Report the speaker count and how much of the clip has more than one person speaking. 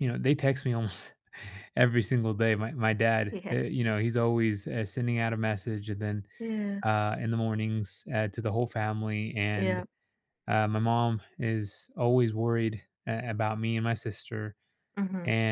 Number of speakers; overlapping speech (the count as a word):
two, about 3%